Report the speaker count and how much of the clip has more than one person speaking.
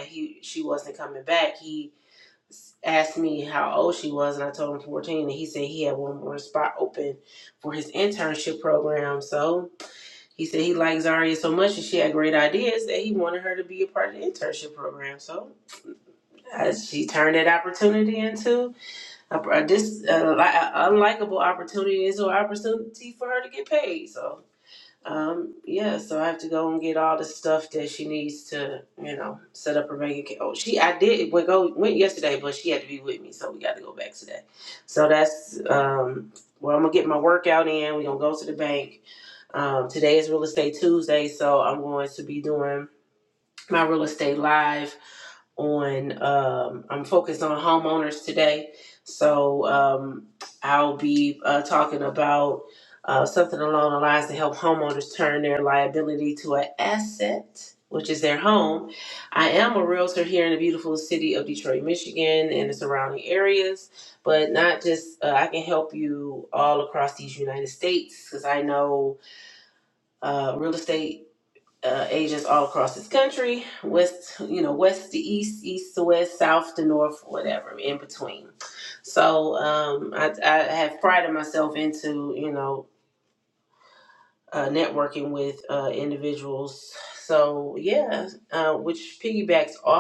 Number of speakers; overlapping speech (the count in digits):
1, no overlap